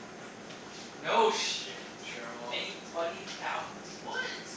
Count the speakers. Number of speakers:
2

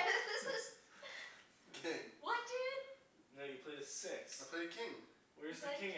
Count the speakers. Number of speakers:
3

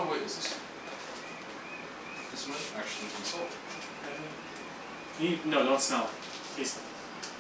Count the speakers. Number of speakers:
2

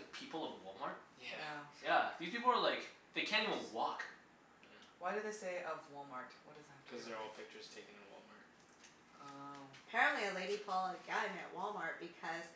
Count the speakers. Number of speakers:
4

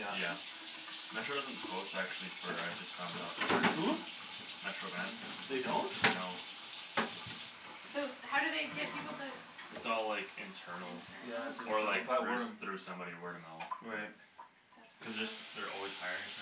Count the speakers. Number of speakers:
3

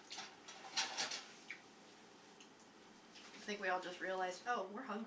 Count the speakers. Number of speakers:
1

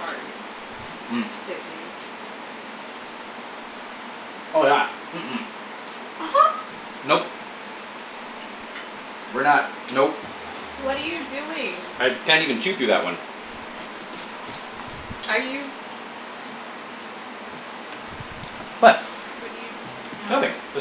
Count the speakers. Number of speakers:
2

